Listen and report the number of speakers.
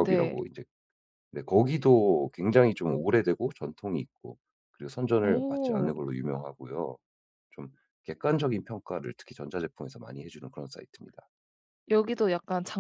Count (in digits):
2